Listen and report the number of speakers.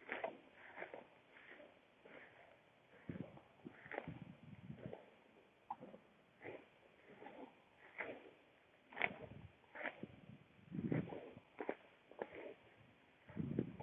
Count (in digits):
0